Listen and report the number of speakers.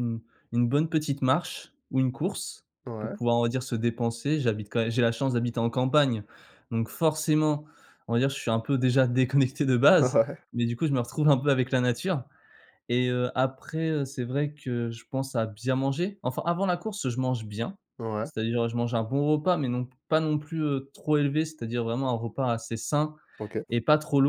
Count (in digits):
2